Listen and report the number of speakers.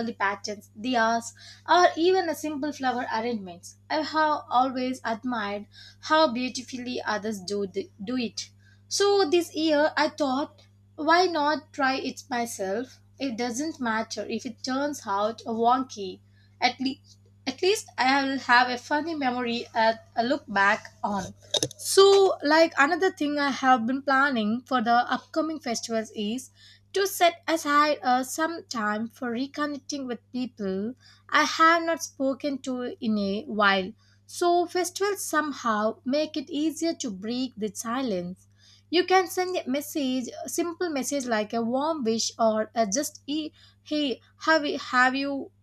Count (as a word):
one